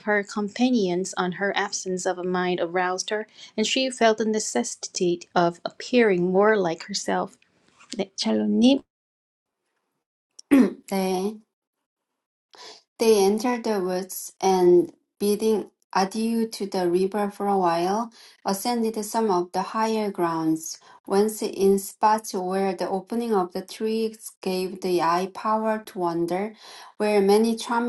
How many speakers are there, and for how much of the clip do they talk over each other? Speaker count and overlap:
two, no overlap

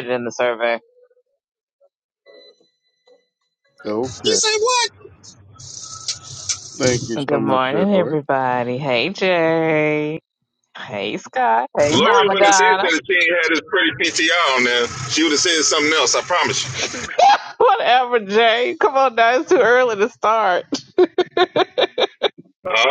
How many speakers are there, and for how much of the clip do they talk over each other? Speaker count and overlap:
three, about 10%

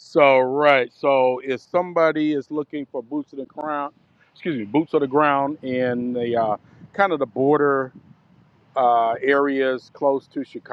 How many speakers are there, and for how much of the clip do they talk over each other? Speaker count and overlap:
one, no overlap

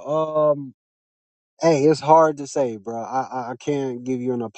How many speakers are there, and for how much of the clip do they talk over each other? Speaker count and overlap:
one, no overlap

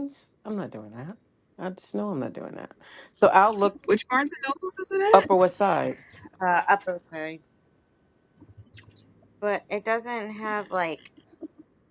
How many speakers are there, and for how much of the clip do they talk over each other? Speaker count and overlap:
three, about 2%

